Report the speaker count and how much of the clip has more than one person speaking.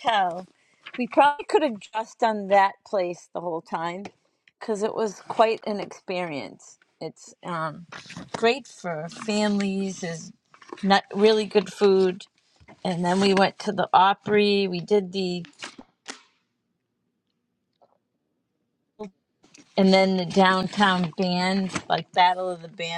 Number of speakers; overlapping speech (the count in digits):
1, no overlap